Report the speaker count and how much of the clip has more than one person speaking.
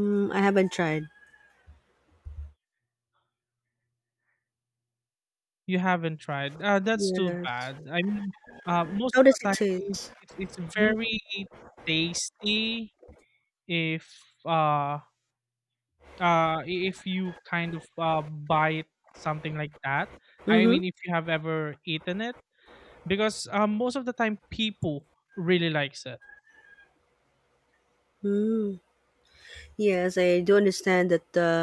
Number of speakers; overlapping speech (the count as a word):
two, about 6%